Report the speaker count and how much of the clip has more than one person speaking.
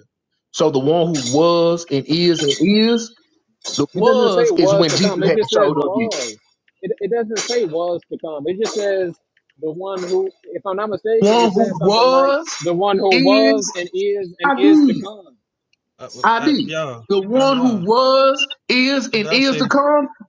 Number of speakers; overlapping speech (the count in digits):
3, about 32%